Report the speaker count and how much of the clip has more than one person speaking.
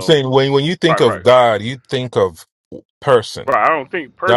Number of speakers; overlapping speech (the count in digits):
2, about 15%